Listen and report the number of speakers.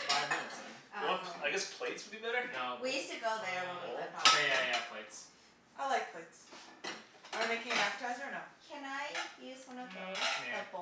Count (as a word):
four